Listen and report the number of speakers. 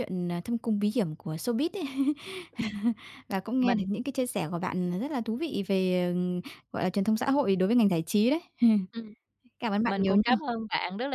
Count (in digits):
2